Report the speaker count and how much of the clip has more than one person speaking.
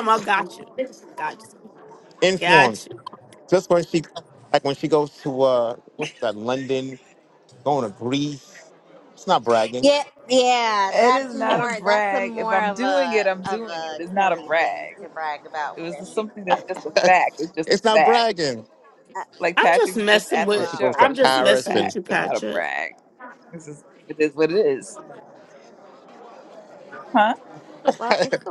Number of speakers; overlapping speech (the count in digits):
4, about 34%